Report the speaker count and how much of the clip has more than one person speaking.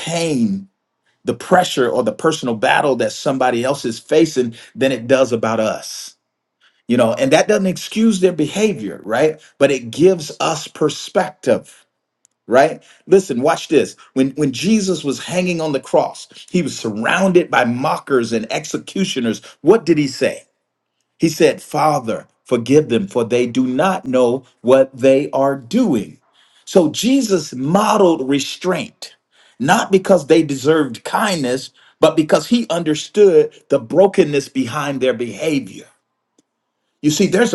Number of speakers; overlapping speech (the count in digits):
1, no overlap